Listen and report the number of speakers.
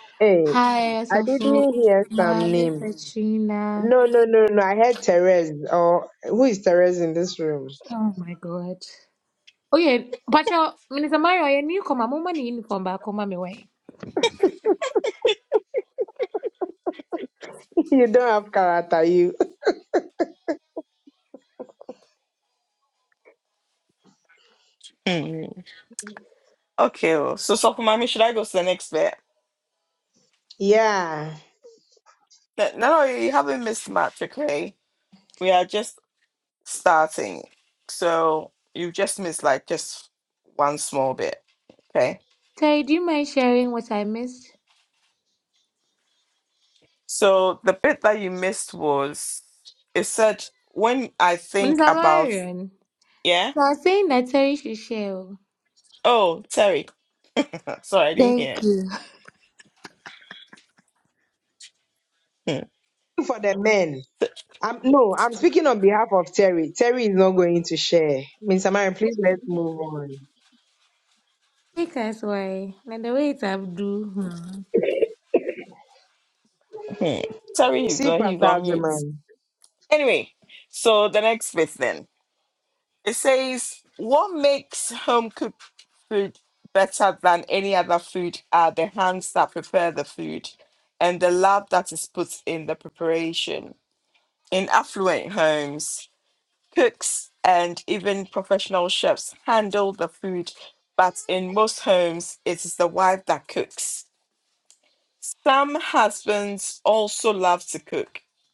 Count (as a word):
three